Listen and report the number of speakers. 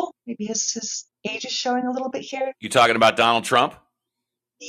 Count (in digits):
2